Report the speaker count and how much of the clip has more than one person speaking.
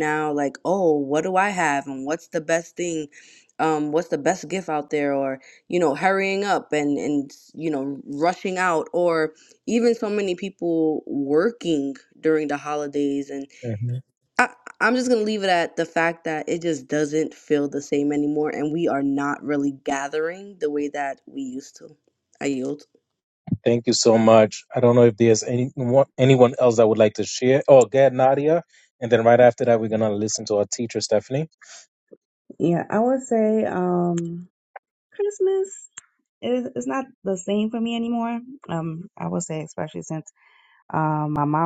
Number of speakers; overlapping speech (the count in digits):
3, no overlap